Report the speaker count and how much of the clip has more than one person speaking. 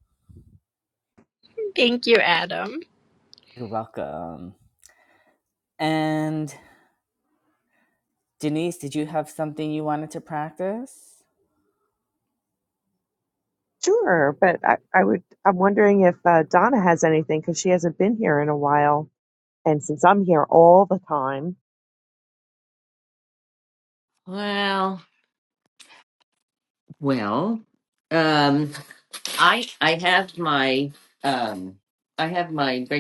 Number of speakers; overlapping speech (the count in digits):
4, no overlap